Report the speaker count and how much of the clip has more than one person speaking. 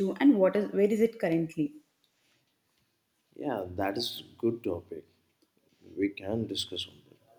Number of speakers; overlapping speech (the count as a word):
two, no overlap